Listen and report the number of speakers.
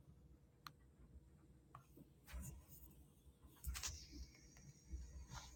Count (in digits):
0